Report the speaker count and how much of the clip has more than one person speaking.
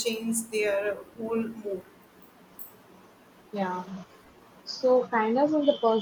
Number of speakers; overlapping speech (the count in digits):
2, no overlap